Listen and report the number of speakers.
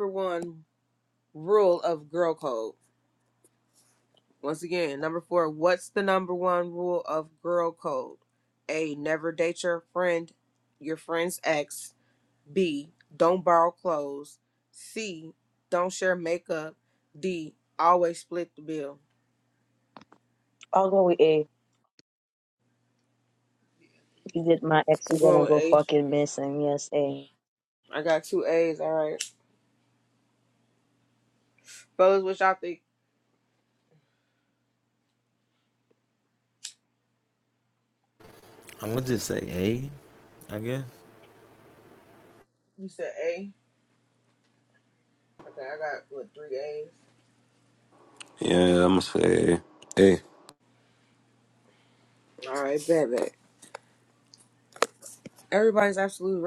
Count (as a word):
four